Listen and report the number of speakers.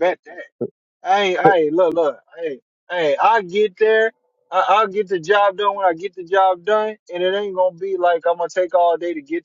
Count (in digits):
1